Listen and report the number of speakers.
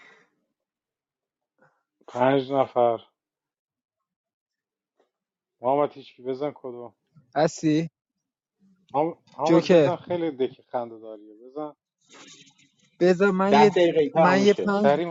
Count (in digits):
3